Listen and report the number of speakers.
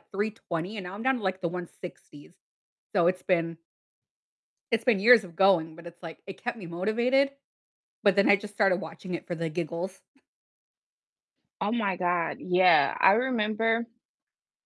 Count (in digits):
2